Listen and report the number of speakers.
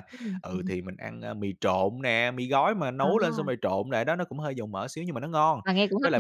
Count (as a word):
two